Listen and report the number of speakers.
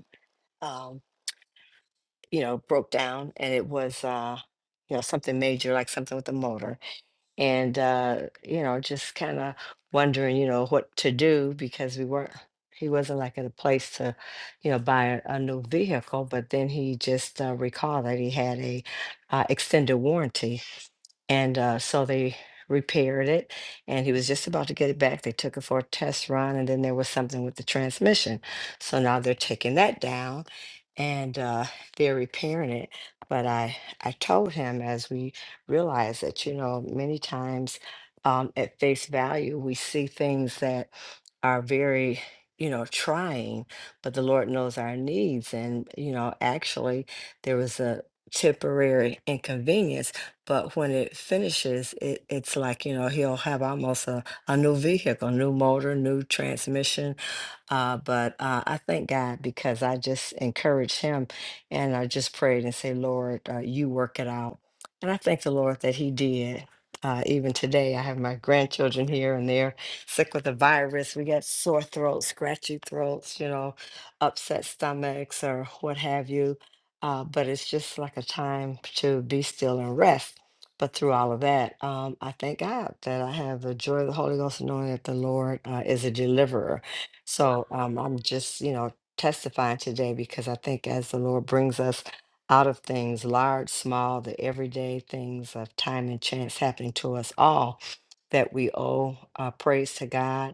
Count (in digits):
1